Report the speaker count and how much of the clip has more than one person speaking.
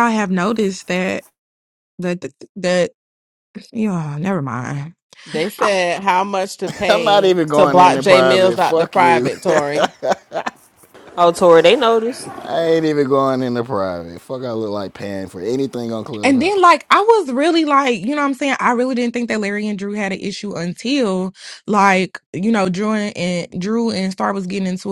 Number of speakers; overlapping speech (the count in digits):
4, about 12%